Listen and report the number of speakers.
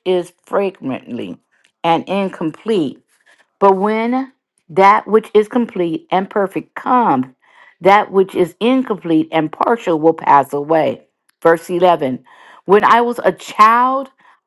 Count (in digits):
1